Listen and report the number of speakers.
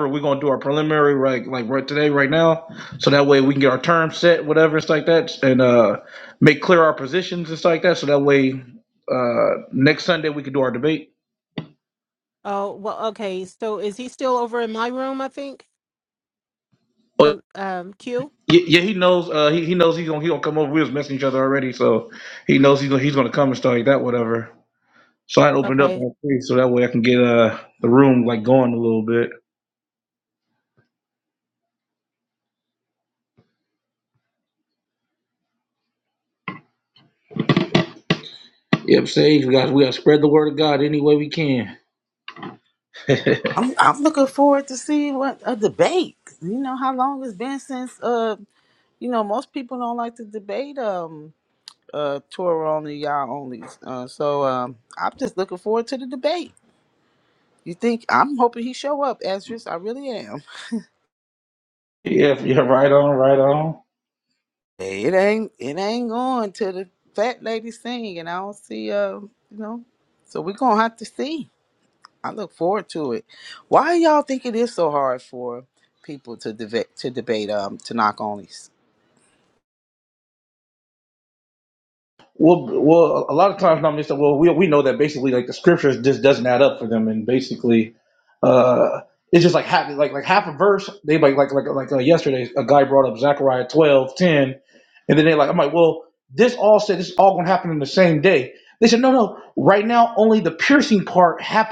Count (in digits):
3